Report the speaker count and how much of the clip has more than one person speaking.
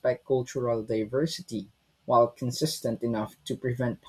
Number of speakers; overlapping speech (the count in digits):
1, no overlap